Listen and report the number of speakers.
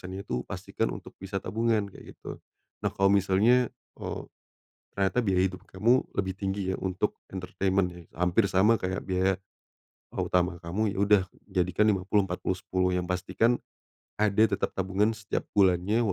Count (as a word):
one